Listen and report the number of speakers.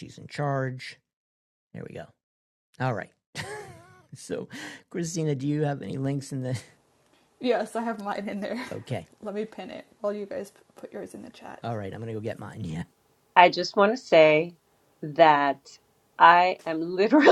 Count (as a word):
three